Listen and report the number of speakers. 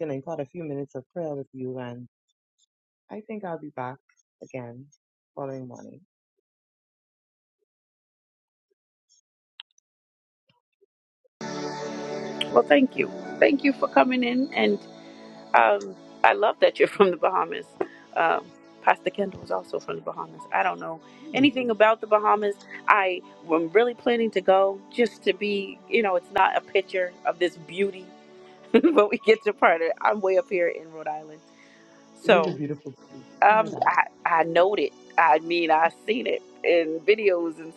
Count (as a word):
two